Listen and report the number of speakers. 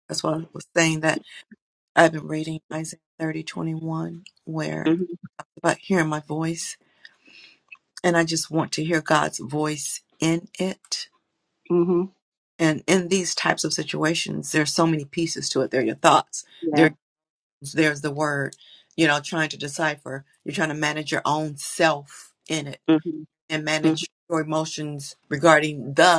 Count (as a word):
two